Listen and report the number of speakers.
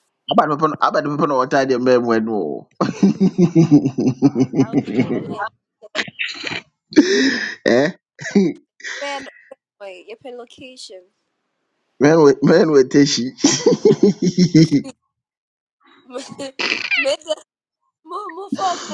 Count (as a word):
two